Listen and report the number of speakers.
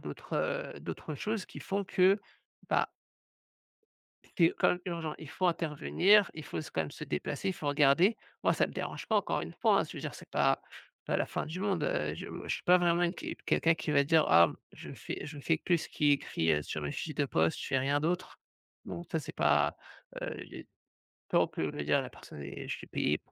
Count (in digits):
1